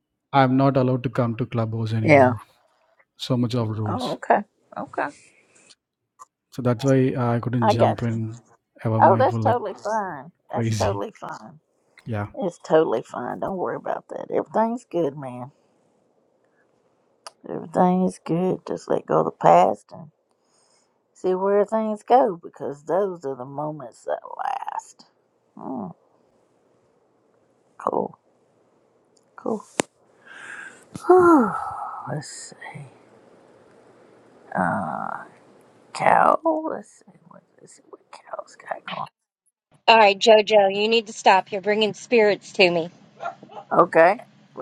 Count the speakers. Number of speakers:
three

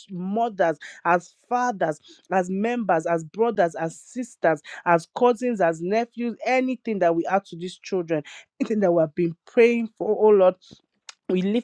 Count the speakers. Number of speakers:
one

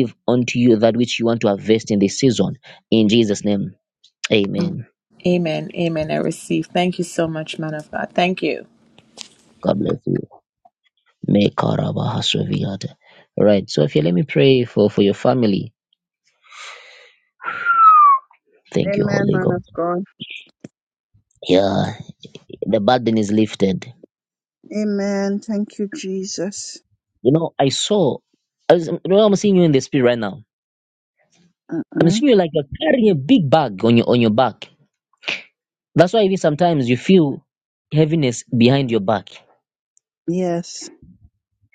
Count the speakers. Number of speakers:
three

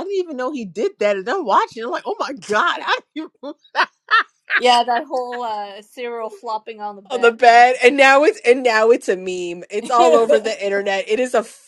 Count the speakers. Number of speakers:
three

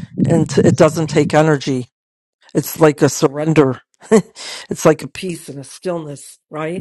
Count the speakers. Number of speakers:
one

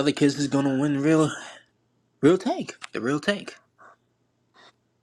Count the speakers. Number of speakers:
one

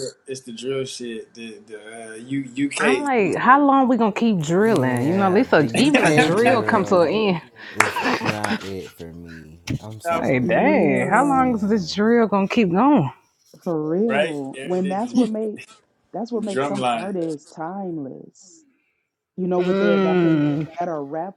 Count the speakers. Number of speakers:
four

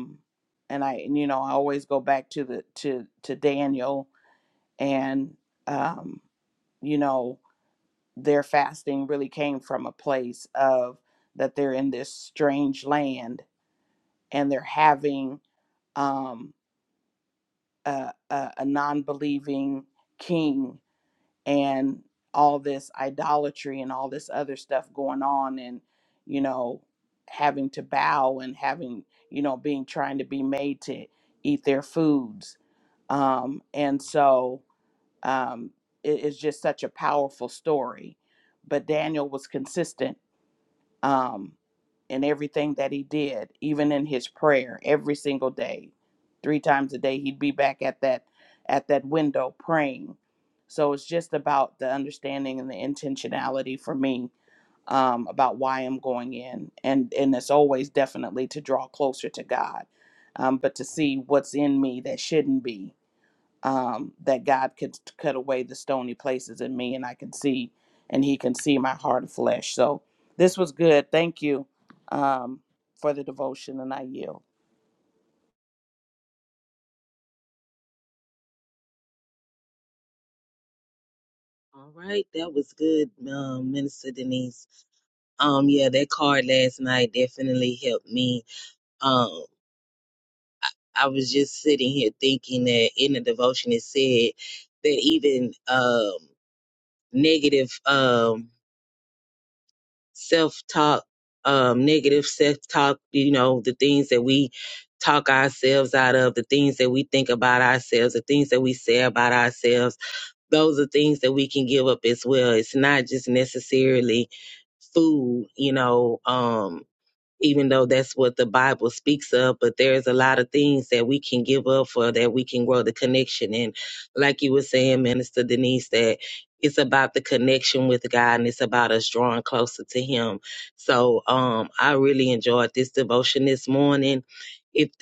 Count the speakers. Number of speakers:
two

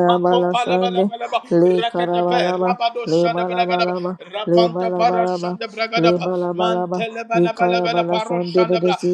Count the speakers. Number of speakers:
two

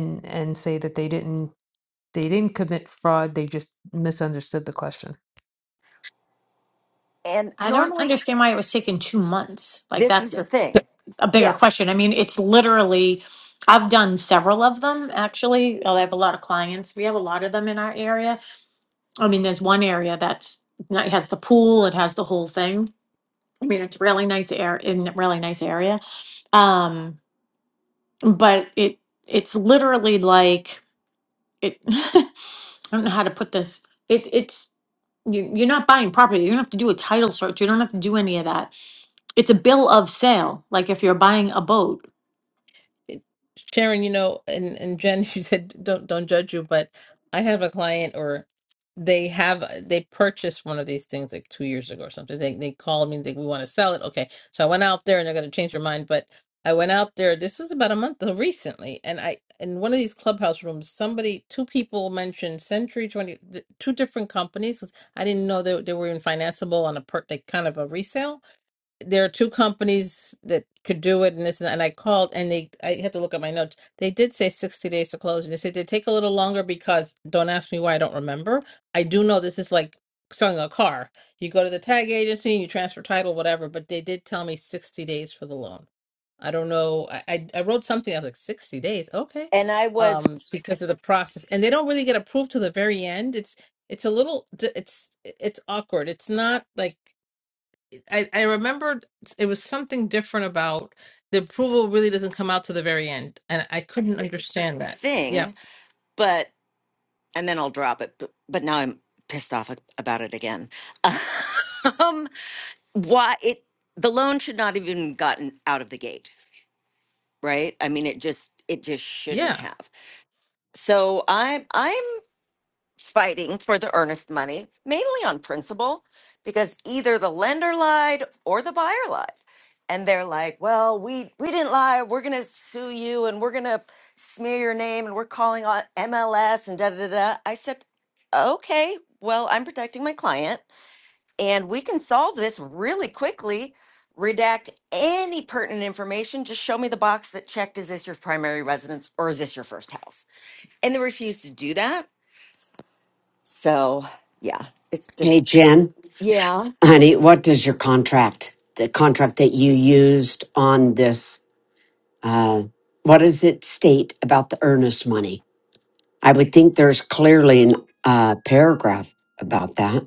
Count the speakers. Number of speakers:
five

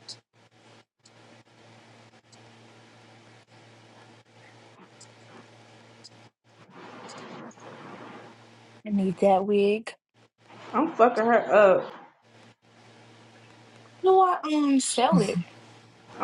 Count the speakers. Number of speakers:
two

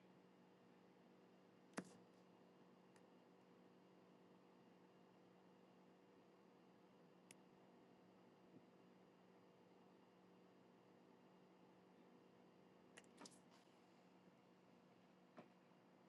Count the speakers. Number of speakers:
zero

